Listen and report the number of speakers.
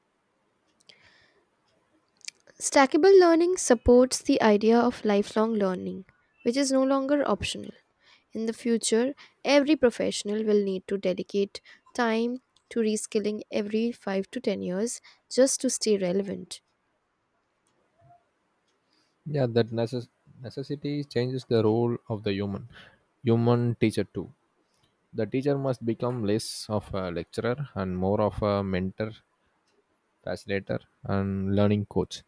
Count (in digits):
2